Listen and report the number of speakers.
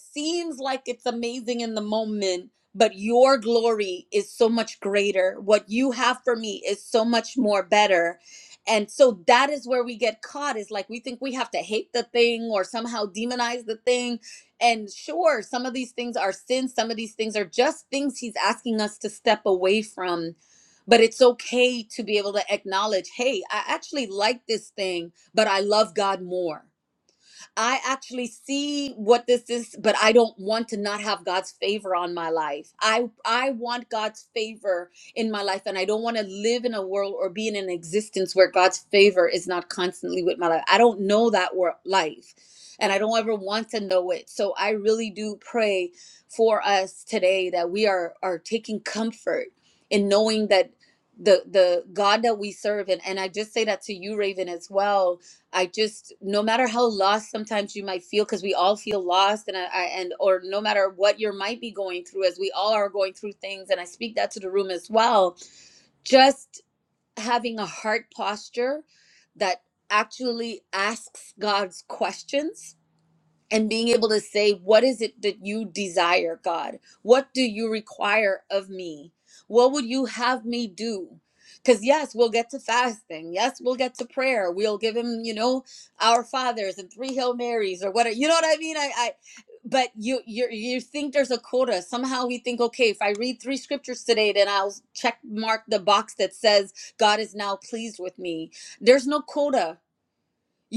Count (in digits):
1